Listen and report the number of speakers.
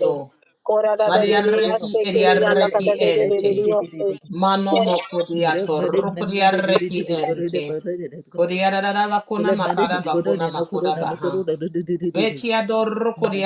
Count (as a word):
three